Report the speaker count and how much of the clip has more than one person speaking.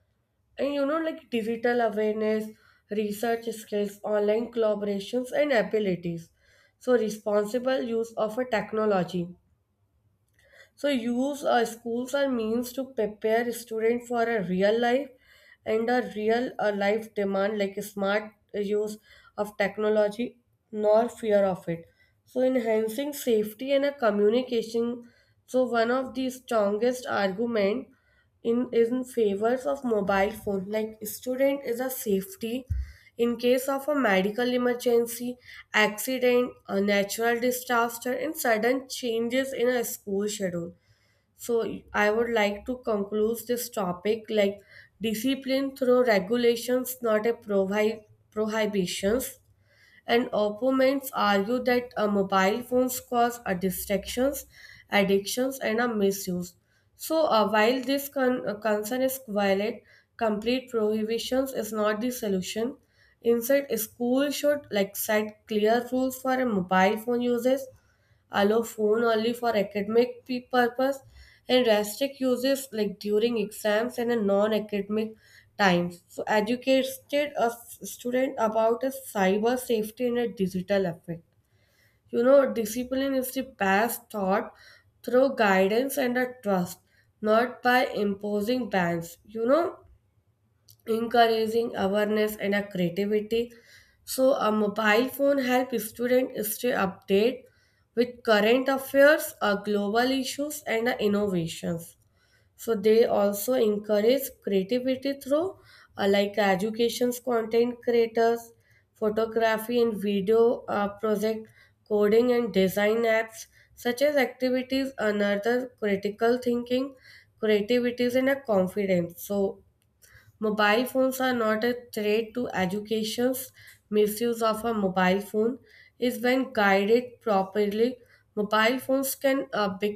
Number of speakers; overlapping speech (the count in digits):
1, no overlap